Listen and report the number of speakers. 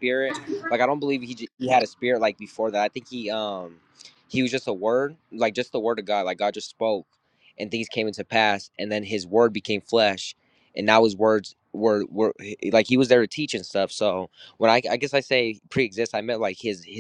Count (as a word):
one